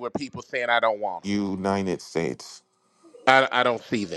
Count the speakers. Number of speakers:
2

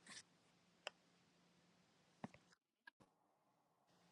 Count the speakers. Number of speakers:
0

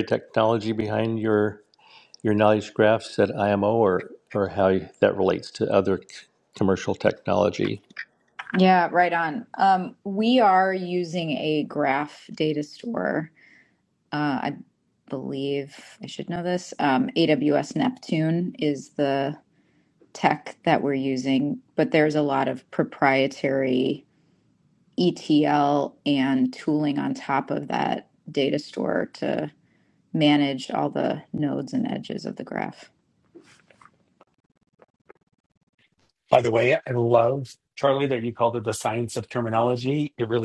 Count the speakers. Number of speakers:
3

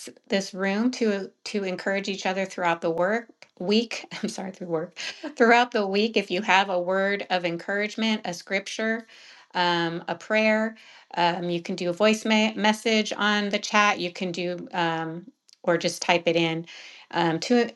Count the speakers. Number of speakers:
1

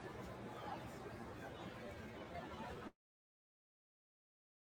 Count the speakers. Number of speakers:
0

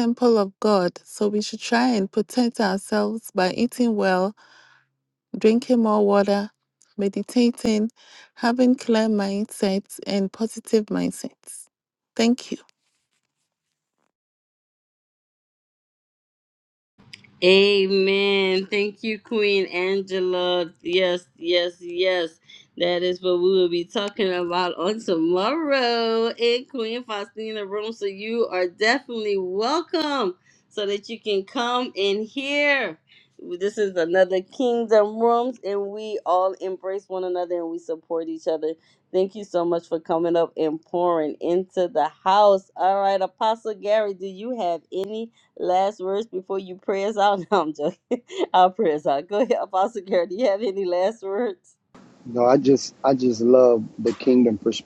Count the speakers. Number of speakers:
3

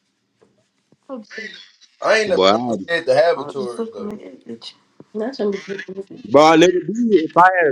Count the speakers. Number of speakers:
3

